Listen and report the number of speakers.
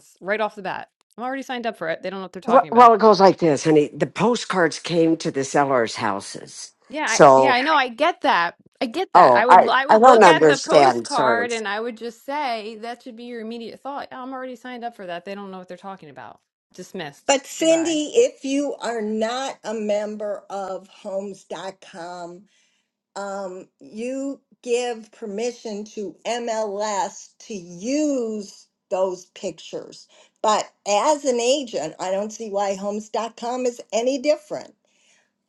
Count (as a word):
three